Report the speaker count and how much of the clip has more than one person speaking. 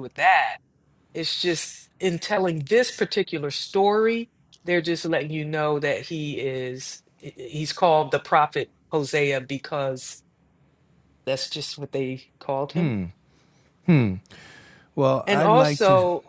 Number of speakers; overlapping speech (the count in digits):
2, about 6%